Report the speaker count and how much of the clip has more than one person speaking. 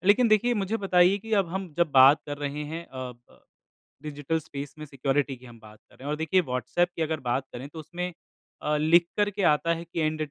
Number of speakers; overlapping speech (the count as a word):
one, no overlap